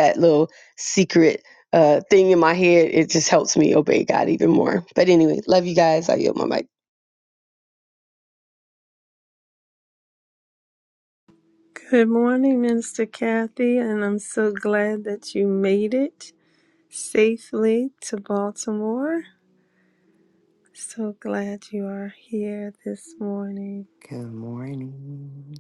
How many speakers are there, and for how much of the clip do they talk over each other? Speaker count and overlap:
3, no overlap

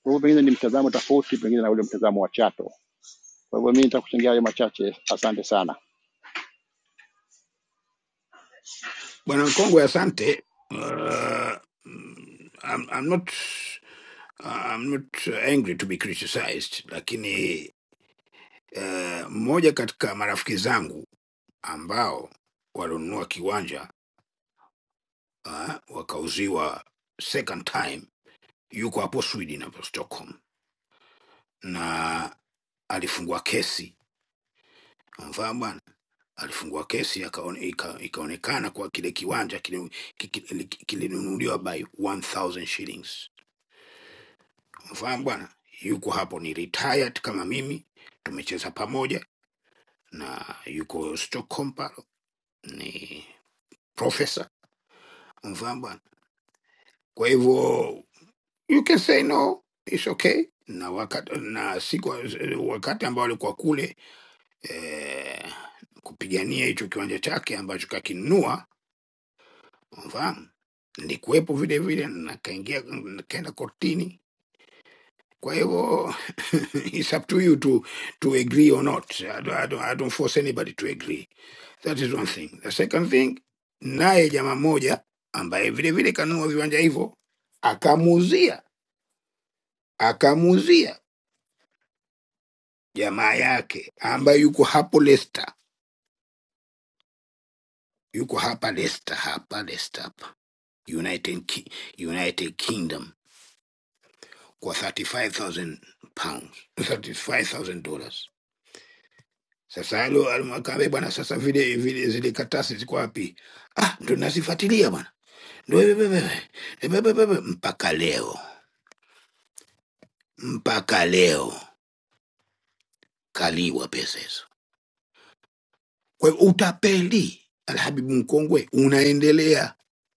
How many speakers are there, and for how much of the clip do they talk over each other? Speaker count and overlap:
2, no overlap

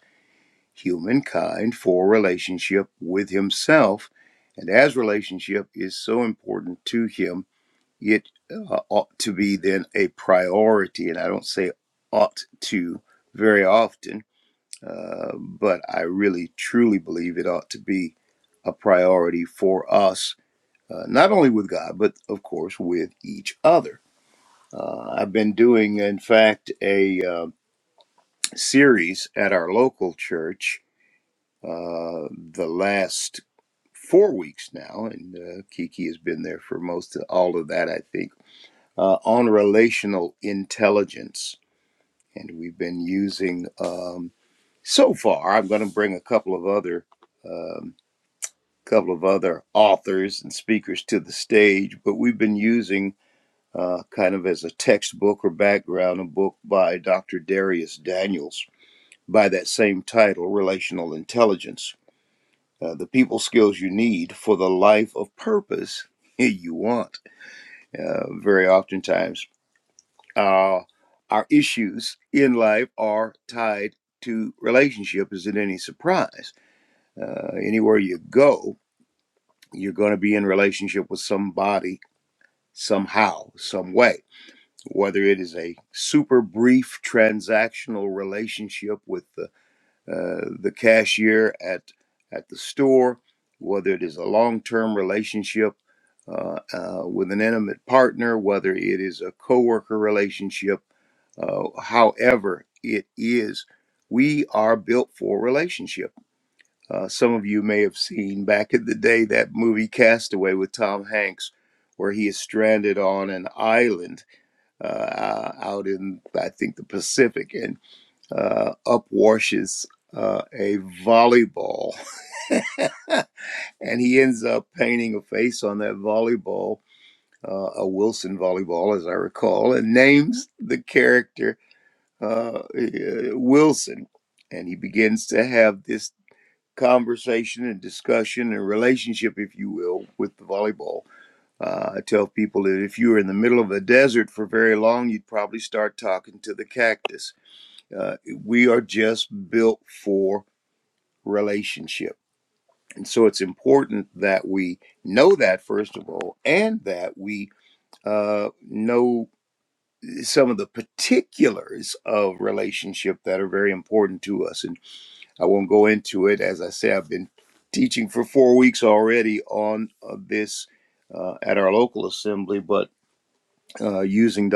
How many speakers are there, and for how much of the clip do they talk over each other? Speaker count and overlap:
1, no overlap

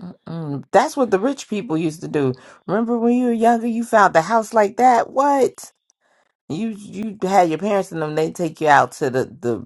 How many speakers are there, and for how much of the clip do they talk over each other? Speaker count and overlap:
1, no overlap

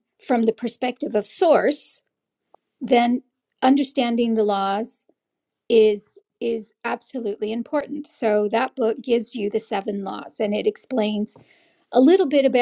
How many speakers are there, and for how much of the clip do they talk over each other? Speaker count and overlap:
1, no overlap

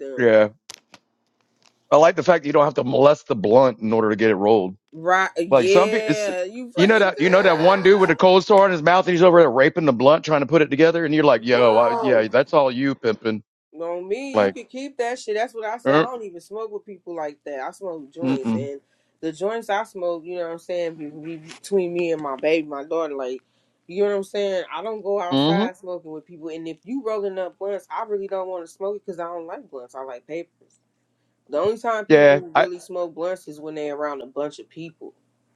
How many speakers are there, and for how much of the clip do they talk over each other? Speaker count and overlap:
2, about 14%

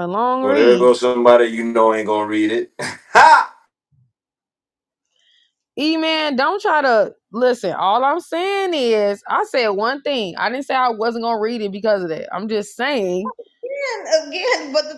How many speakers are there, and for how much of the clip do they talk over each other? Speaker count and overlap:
3, about 3%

